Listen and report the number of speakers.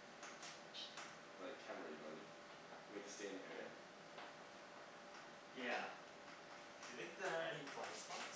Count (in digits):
2